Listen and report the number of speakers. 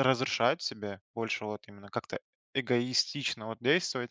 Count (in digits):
1